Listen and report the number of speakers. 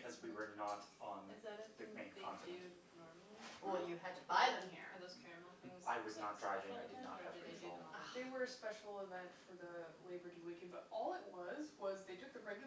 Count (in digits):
4